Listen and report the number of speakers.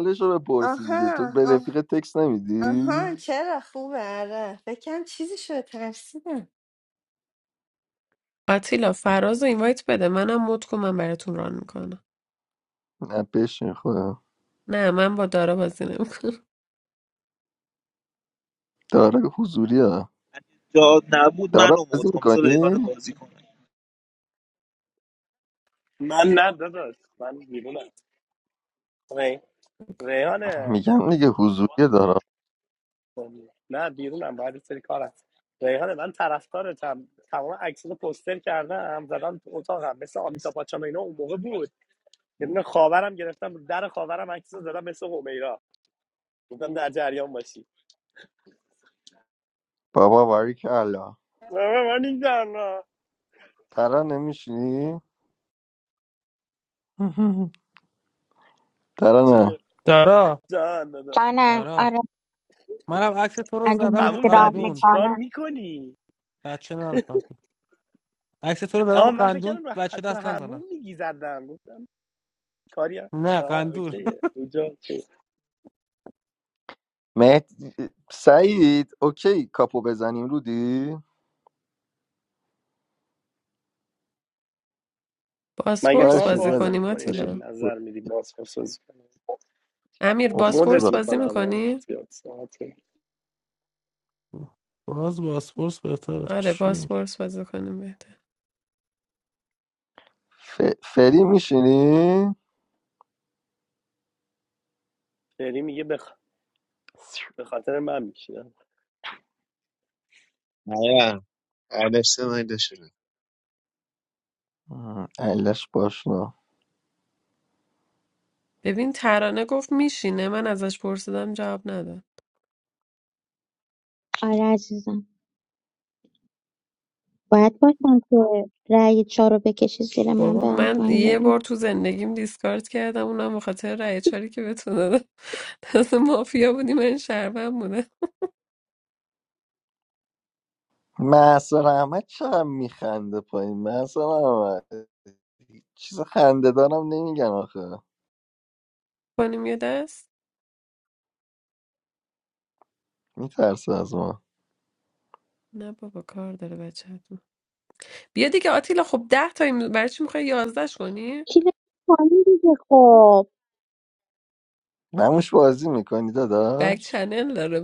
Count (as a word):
eight